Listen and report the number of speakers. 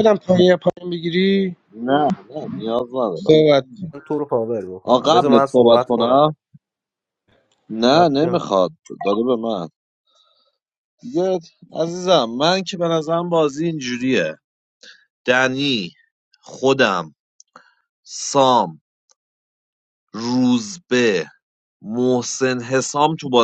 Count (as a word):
three